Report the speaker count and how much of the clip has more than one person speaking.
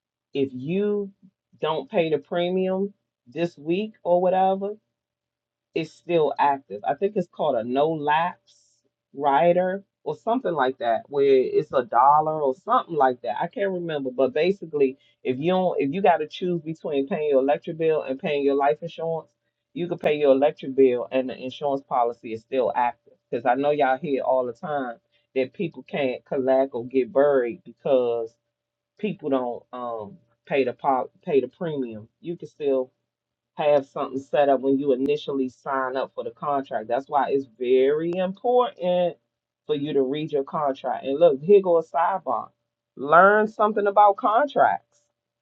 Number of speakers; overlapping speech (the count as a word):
one, no overlap